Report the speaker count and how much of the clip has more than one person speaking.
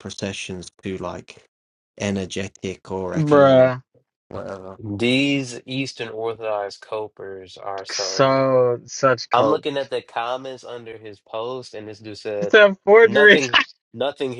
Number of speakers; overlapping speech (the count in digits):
3, about 13%